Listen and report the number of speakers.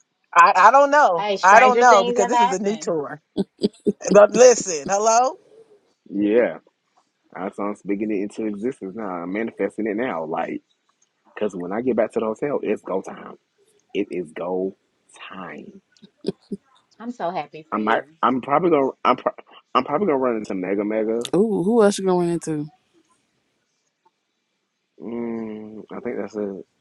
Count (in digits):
4